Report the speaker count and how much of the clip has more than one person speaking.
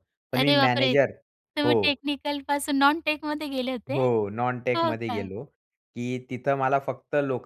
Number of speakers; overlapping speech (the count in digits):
2, about 21%